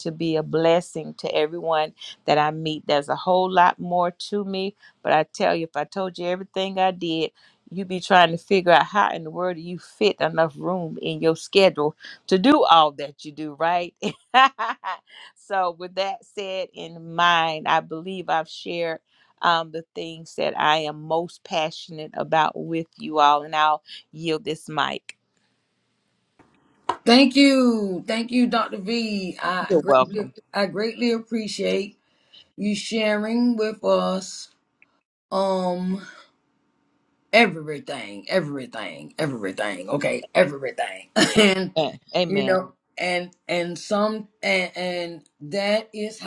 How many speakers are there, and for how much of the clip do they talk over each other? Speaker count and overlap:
2, about 2%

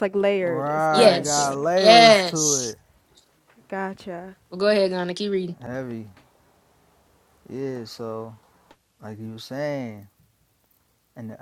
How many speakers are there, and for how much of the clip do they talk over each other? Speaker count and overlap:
3, about 19%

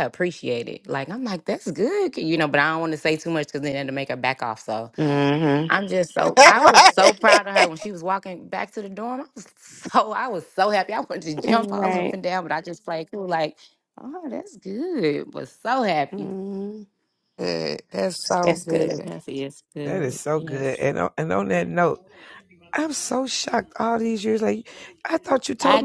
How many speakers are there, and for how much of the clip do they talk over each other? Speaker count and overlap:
5, about 12%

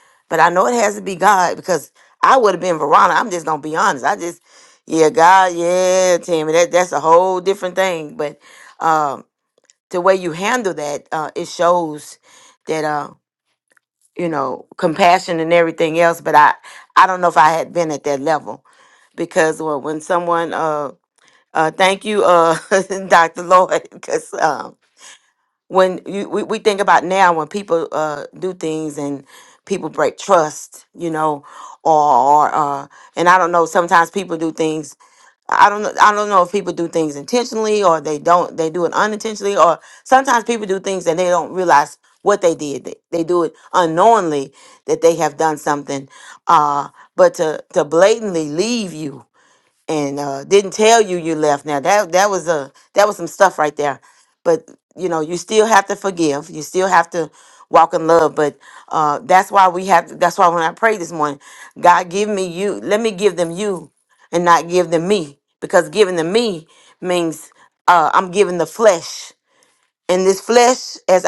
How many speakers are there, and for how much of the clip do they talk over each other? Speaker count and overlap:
1, no overlap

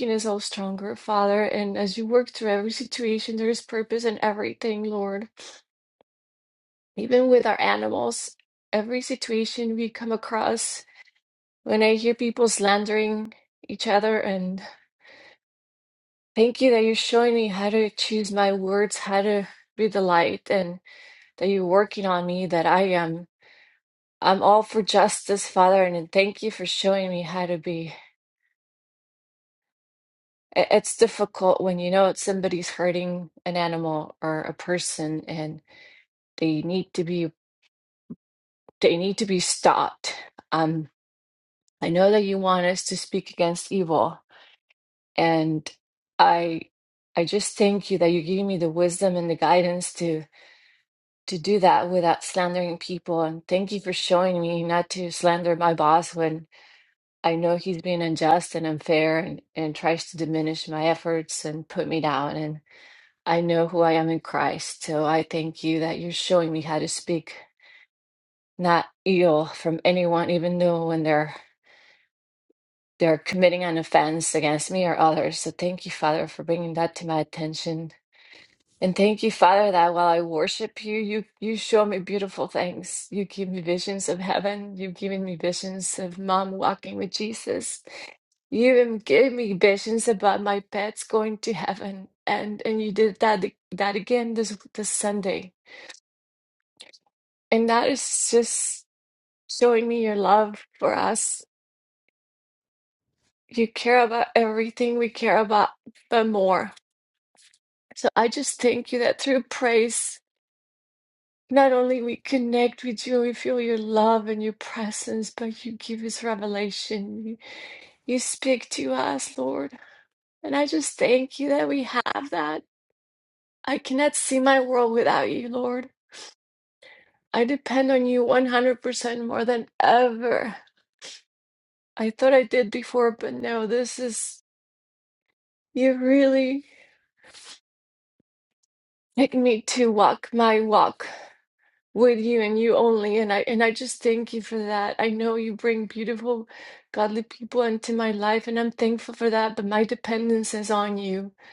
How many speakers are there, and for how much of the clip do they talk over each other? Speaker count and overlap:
1, no overlap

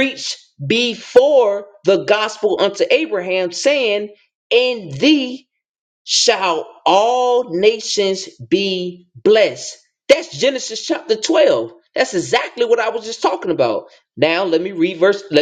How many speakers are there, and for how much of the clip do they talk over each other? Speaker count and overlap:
1, no overlap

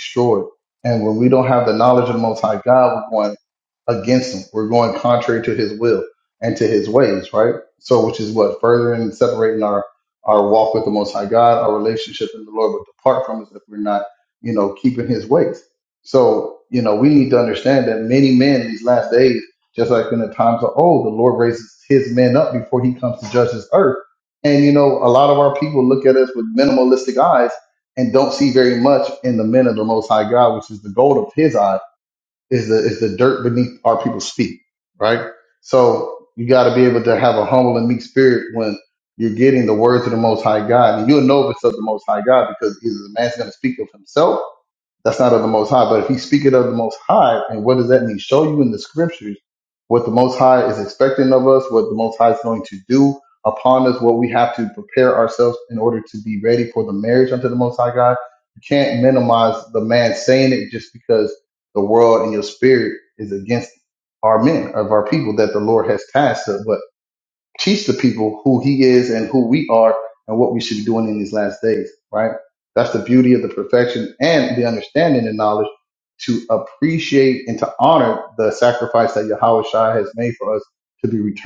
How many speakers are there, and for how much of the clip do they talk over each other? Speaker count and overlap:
1, no overlap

